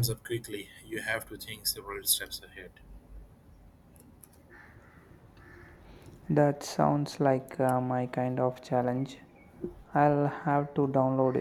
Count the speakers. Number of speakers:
2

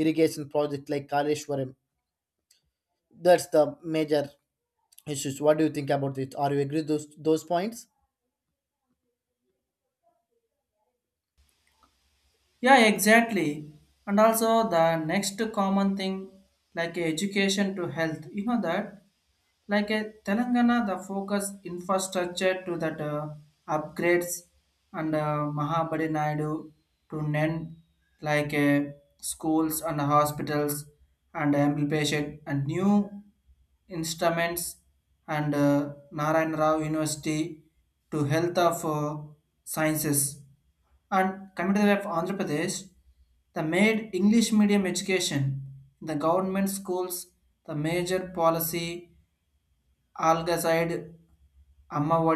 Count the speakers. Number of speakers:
2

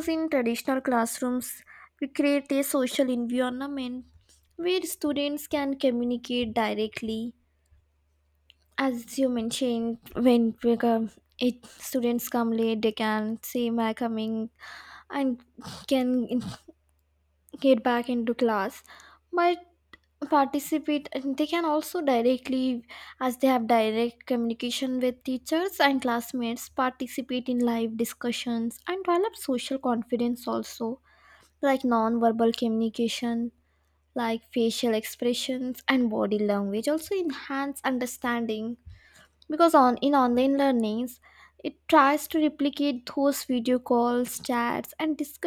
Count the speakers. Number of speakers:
1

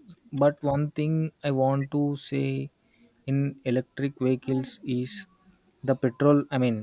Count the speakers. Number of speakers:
1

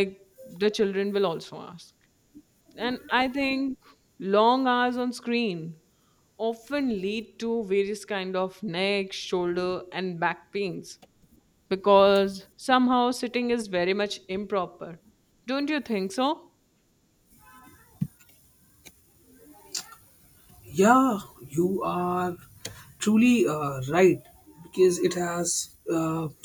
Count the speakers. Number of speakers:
2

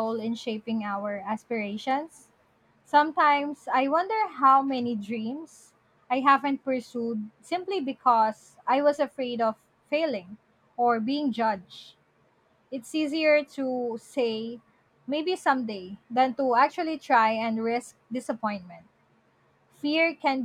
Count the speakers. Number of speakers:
1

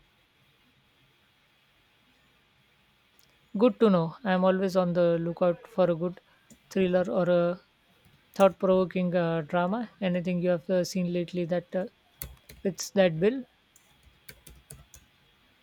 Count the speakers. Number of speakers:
1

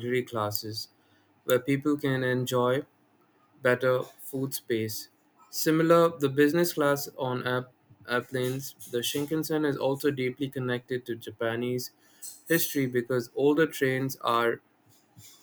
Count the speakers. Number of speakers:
1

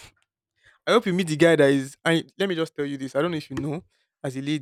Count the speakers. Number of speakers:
1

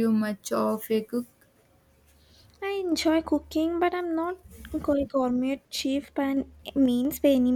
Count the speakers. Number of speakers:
2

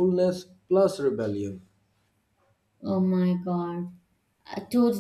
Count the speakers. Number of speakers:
2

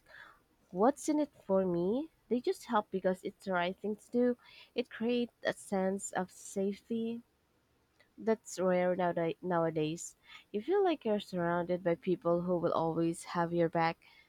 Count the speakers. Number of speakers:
1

